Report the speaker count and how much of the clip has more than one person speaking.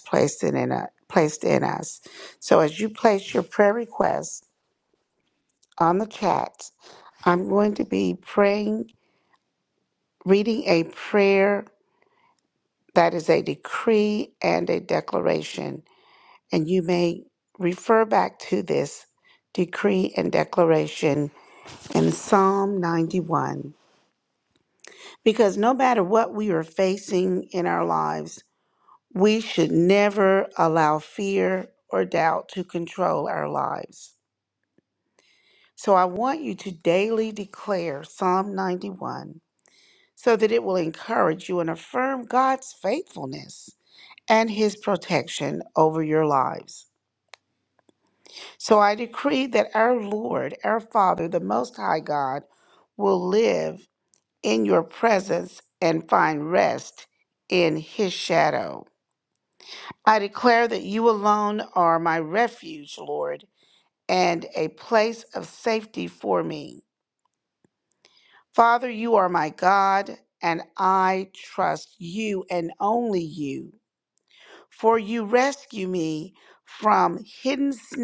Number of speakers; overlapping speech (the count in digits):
1, no overlap